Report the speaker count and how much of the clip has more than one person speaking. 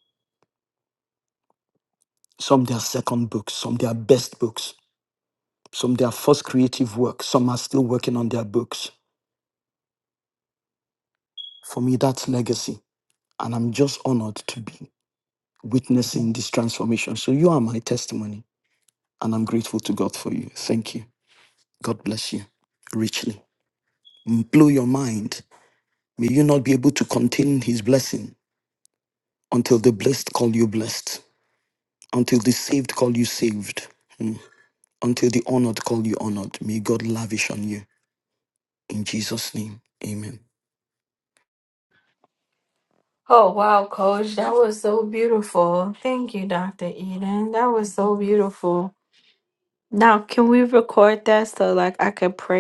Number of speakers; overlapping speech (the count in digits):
2, no overlap